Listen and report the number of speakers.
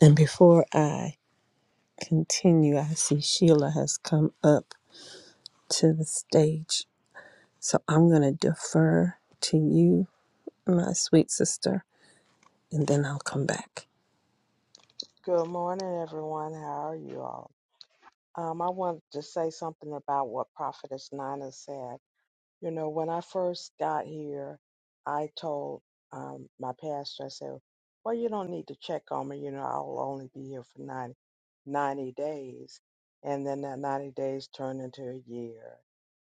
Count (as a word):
two